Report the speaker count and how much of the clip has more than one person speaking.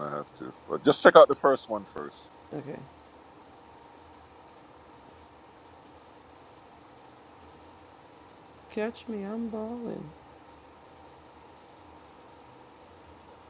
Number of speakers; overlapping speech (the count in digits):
2, no overlap